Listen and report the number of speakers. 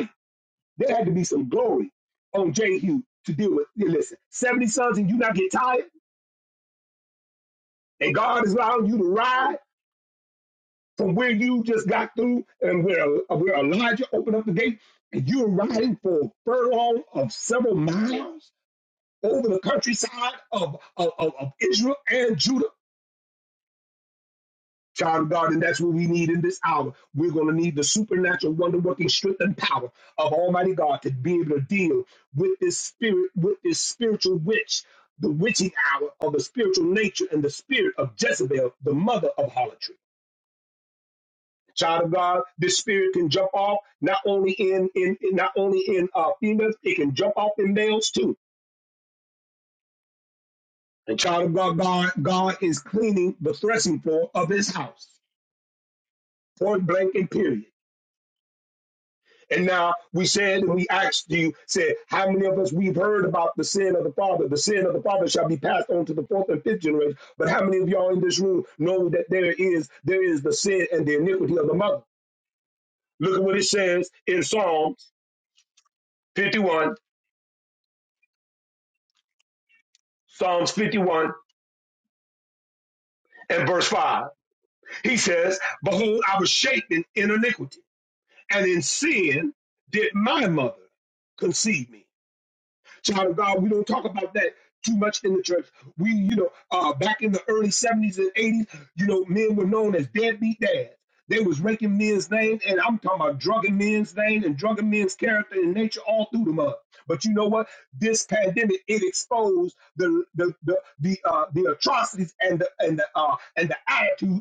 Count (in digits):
1